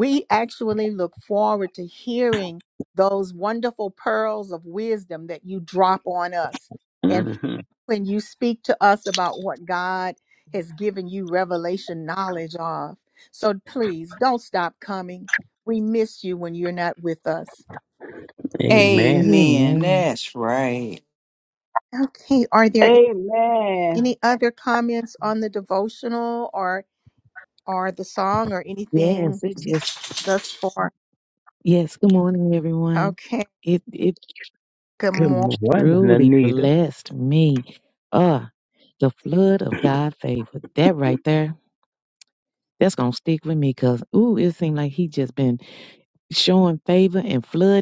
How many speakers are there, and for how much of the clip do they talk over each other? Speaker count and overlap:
five, about 8%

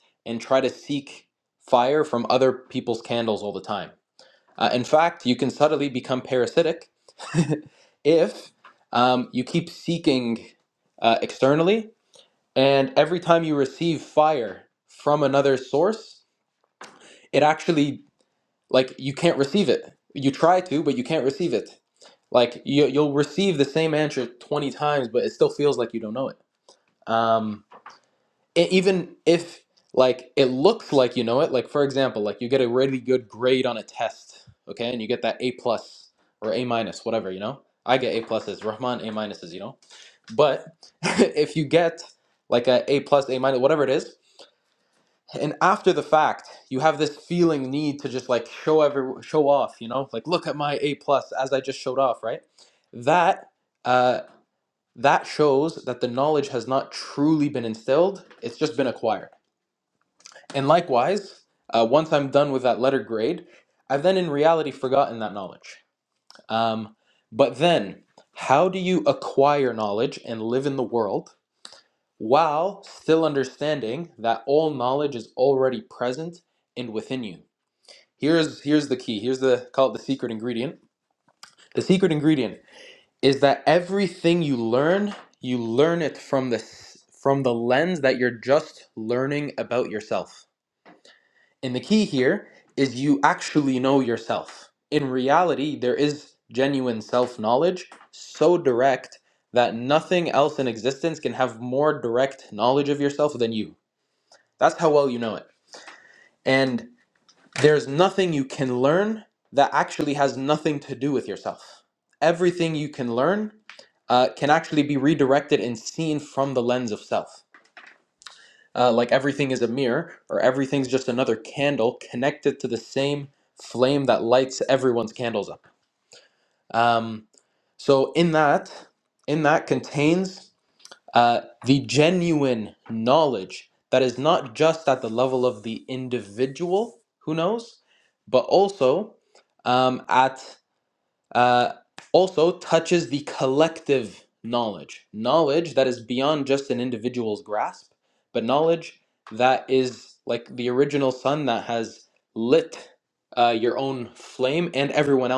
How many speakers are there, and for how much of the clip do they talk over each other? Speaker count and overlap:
one, no overlap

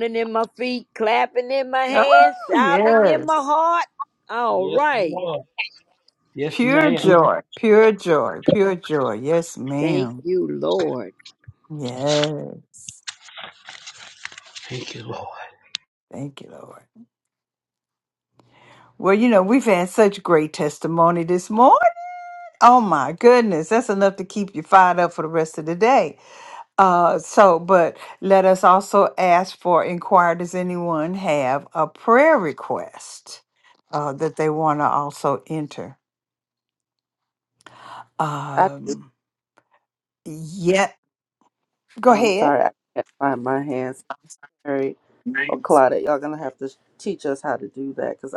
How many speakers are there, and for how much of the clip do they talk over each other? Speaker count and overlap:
four, about 7%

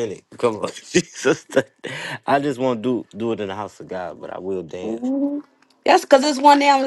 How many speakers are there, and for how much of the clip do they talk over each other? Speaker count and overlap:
two, about 2%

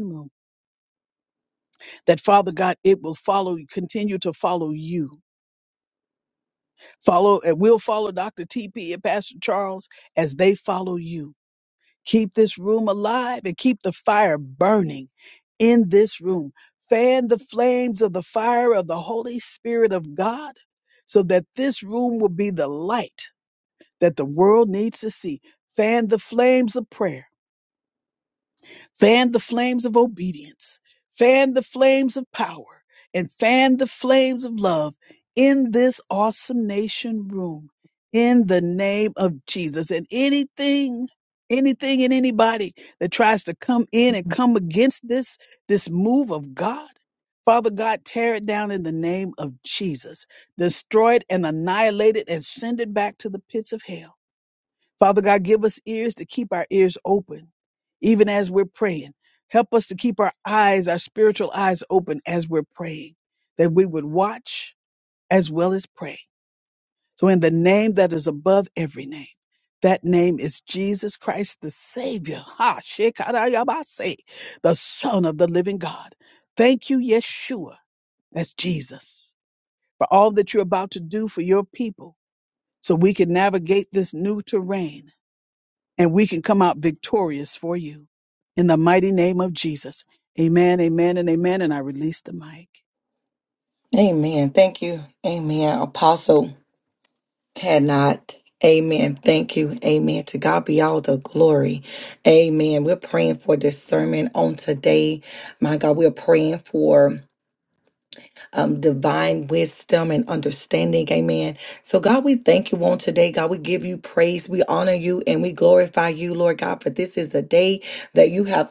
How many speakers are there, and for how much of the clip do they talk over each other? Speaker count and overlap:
two, no overlap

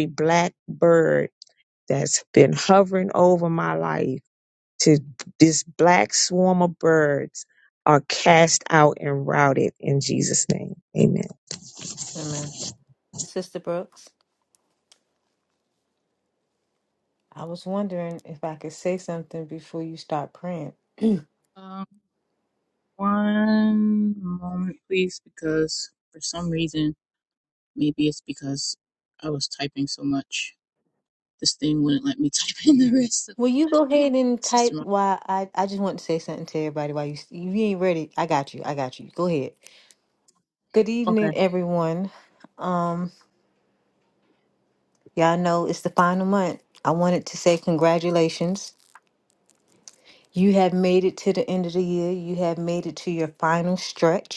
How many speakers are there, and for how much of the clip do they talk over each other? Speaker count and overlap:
three, about 1%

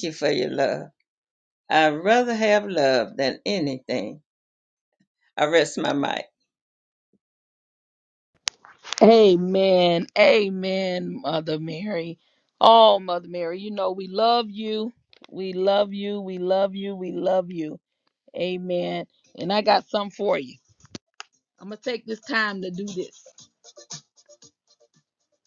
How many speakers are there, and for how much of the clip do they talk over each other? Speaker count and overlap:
two, no overlap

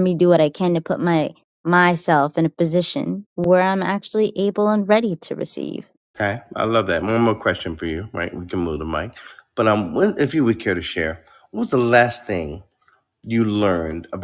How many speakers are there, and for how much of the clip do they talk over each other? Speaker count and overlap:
two, no overlap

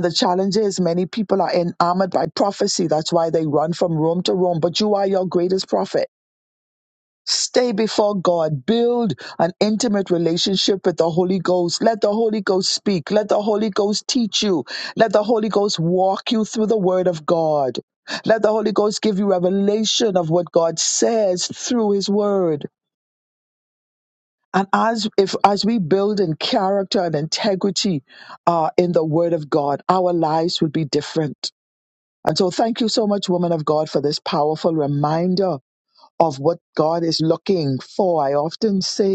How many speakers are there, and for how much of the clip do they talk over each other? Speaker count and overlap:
one, no overlap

